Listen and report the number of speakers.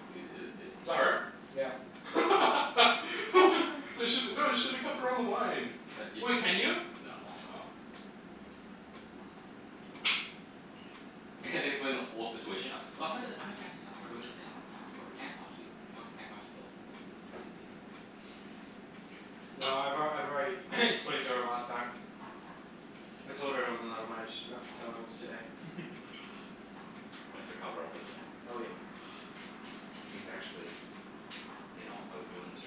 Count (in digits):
3